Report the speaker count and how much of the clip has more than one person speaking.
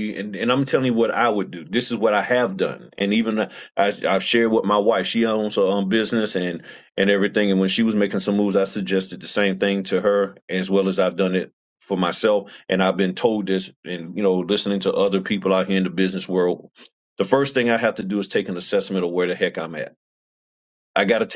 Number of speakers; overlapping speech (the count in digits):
1, no overlap